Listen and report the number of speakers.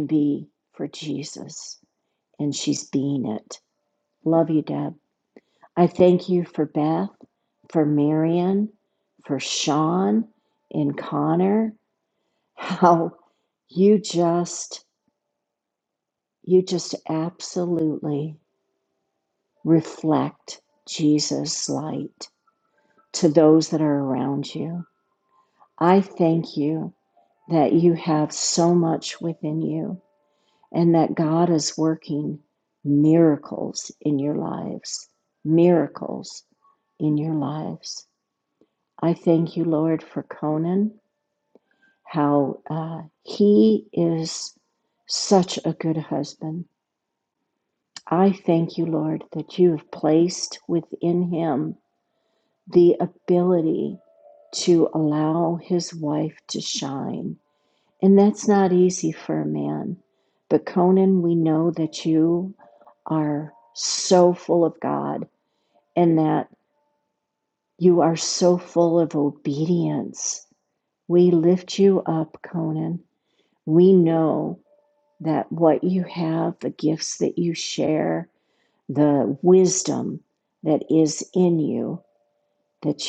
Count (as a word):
one